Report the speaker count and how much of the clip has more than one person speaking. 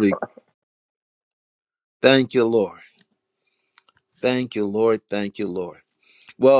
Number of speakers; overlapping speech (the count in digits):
1, no overlap